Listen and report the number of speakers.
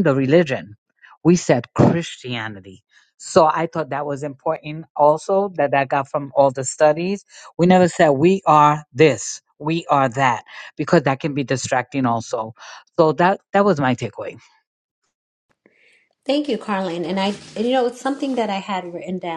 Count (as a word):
two